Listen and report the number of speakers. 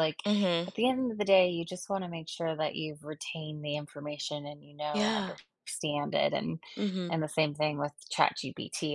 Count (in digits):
2